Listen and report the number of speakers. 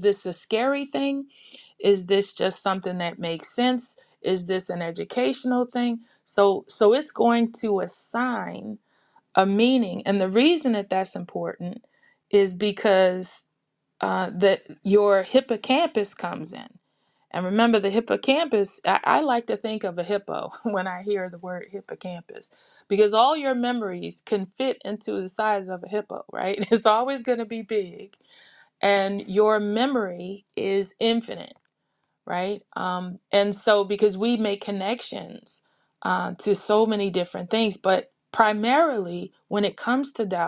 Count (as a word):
one